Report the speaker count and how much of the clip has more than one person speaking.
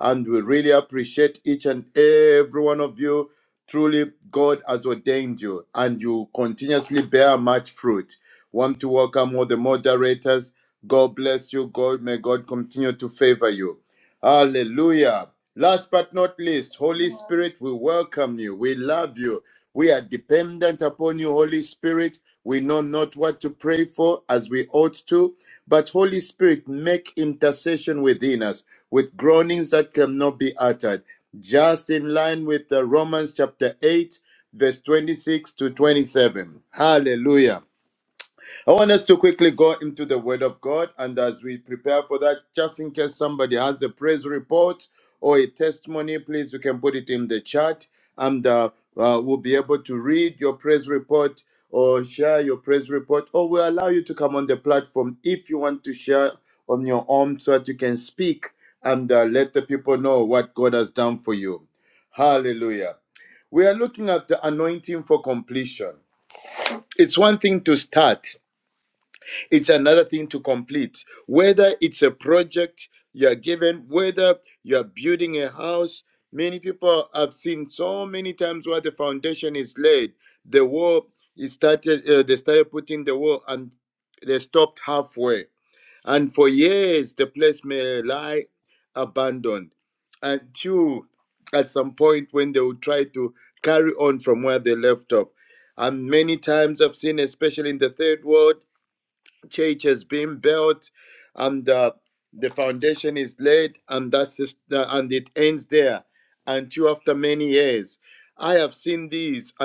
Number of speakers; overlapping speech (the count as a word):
one, no overlap